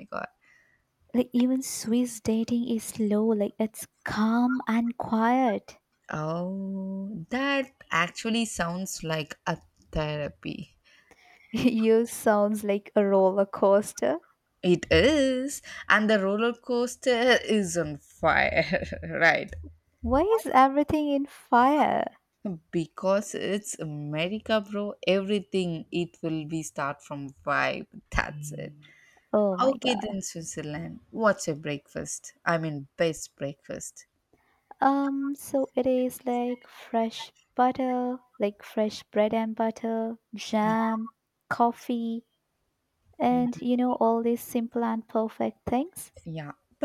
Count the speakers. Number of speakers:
2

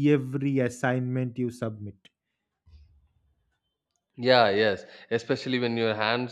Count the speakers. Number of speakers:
2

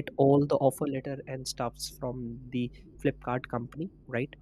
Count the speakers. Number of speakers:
1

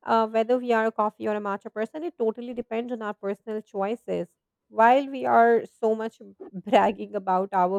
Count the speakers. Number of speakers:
1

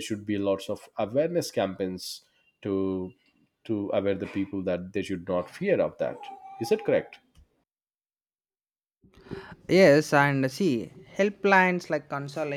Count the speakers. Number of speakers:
2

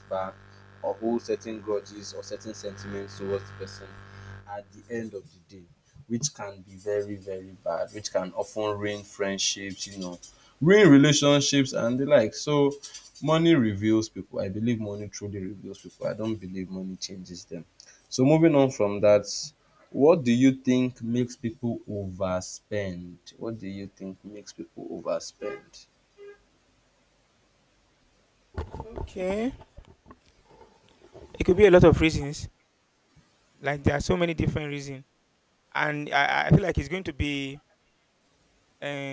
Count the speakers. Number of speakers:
2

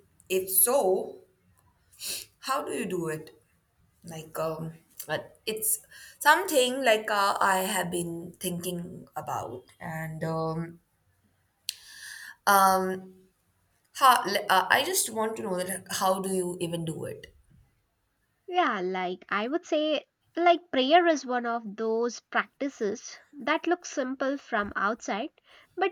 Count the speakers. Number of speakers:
2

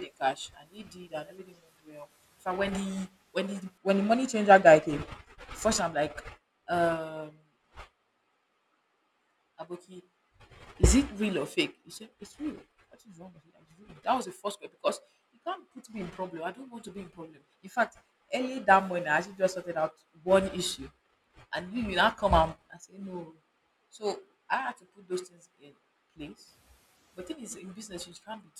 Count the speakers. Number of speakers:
1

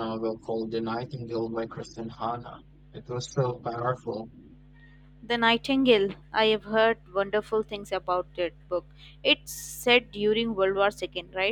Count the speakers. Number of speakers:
2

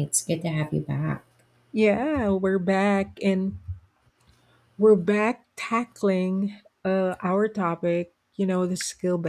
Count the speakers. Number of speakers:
2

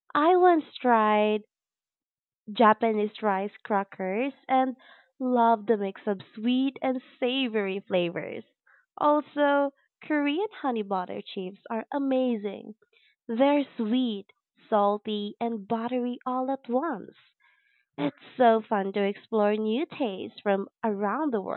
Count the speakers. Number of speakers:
1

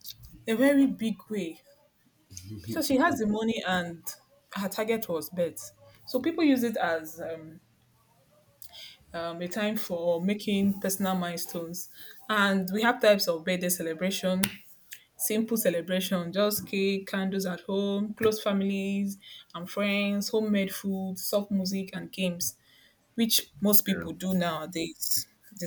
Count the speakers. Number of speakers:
1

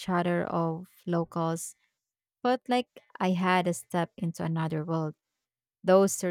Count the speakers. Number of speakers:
1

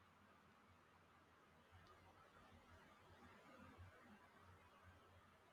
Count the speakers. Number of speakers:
0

